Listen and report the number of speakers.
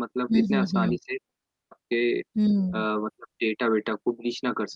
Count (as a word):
two